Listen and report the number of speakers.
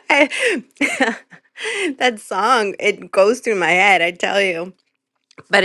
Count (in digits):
1